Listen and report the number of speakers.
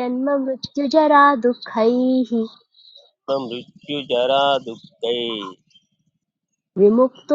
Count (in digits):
2